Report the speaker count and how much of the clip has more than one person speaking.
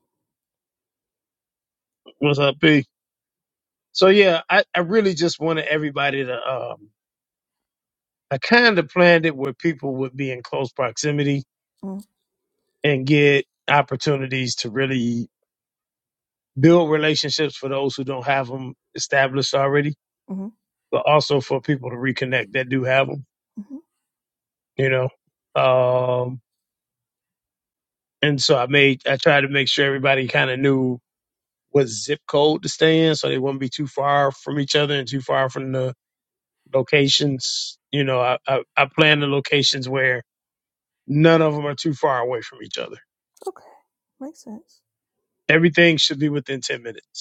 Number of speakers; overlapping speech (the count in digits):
2, no overlap